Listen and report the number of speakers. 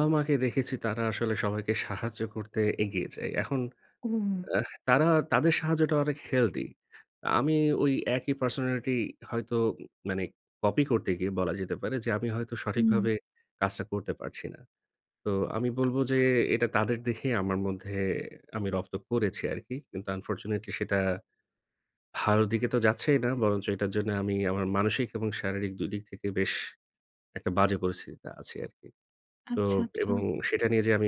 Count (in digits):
2